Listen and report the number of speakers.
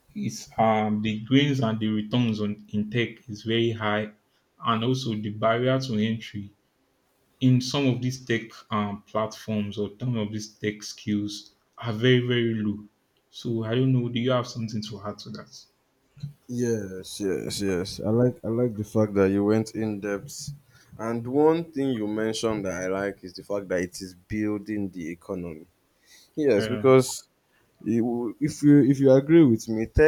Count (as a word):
two